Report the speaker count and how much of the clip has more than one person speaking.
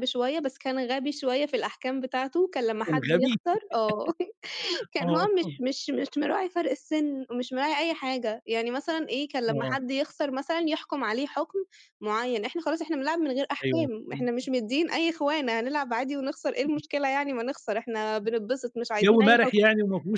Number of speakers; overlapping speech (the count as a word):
two, about 11%